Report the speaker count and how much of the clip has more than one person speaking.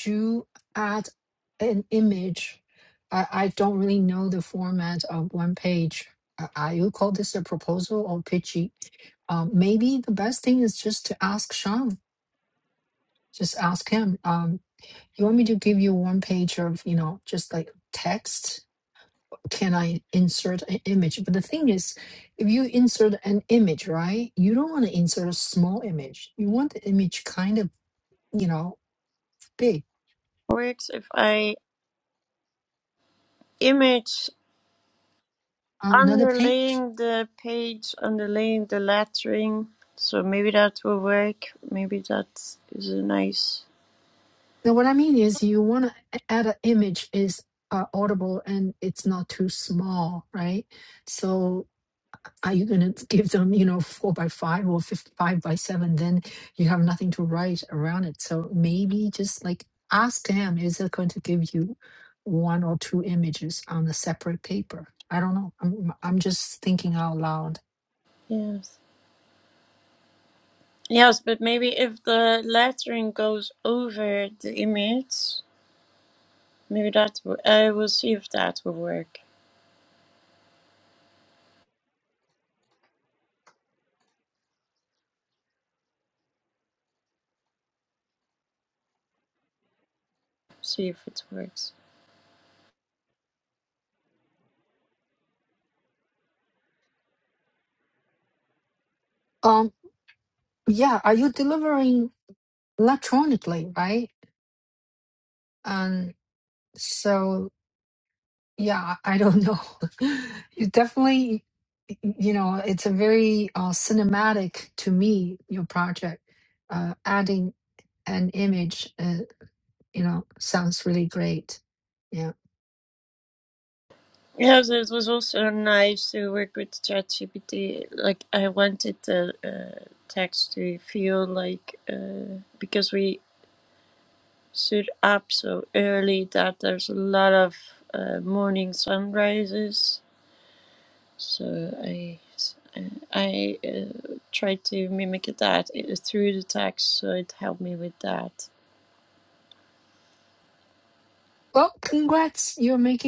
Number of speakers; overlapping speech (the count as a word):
two, about 1%